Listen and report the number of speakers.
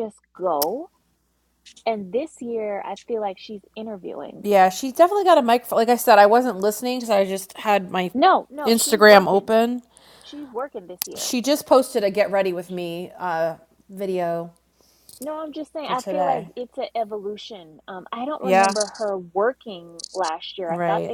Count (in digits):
2